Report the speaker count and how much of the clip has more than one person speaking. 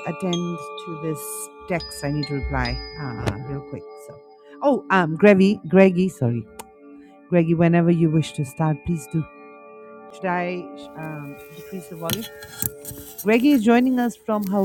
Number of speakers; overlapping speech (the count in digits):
1, no overlap